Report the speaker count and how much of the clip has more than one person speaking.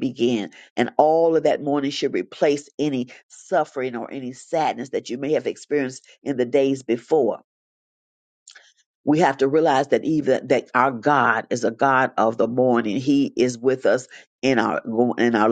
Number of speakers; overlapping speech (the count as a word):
one, no overlap